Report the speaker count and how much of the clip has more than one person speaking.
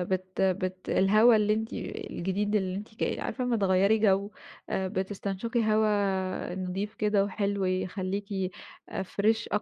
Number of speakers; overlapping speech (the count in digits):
1, no overlap